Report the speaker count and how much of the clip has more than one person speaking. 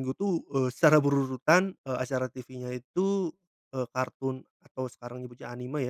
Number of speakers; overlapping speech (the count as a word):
one, no overlap